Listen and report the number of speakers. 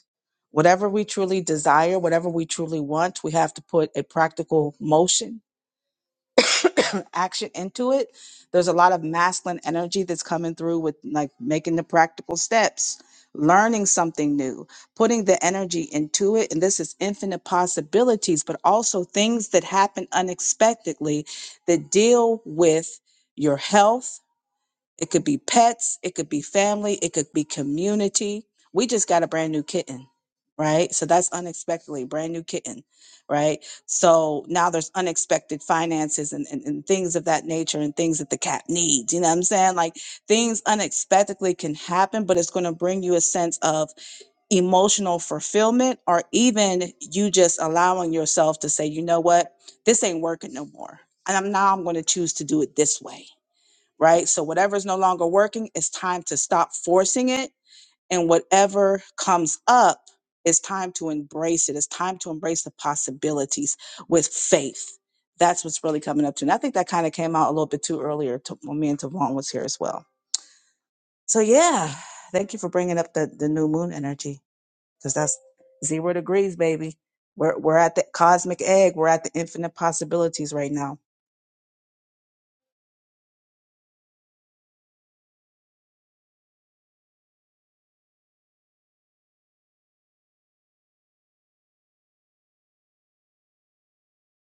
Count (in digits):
1